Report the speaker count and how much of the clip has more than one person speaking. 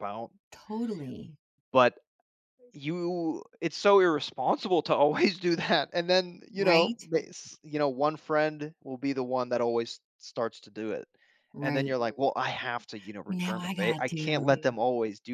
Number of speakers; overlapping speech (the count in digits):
2, about 13%